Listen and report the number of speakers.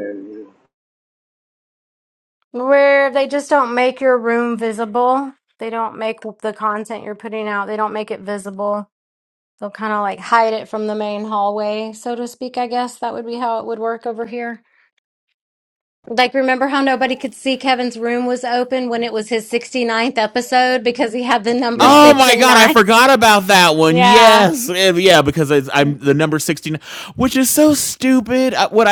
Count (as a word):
three